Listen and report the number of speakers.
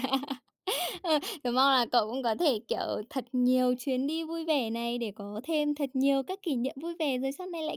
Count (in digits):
1